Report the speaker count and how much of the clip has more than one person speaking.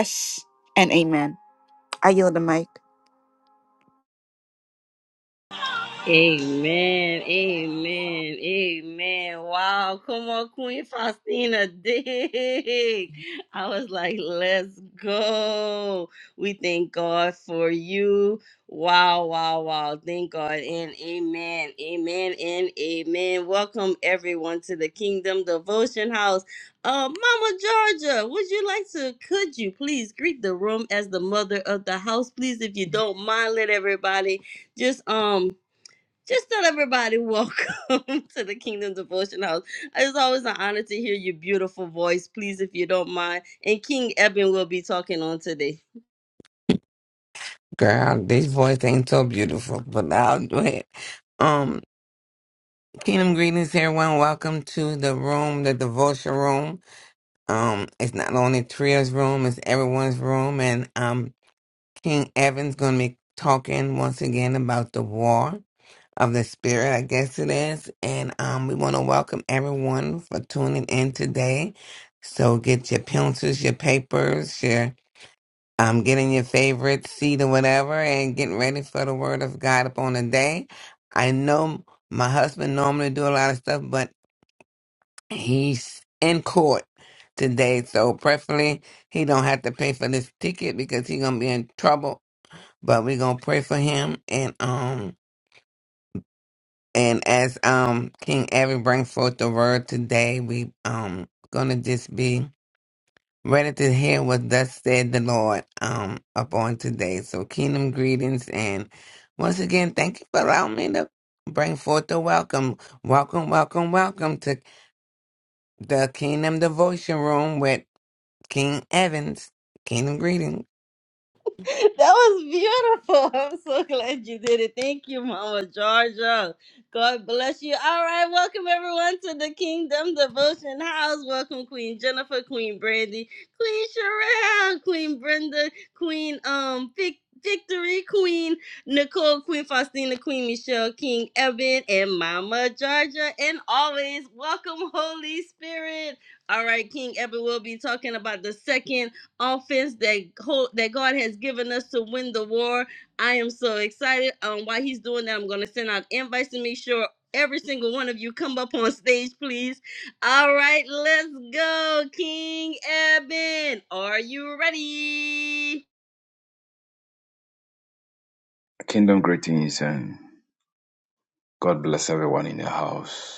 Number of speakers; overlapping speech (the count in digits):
4, no overlap